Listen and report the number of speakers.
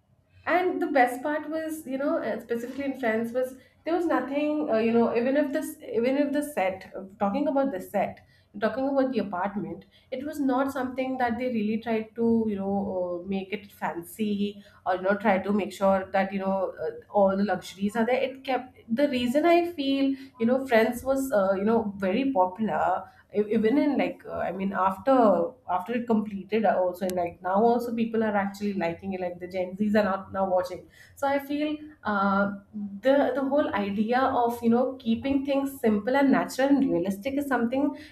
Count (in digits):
1